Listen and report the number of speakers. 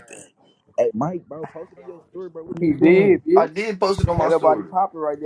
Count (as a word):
three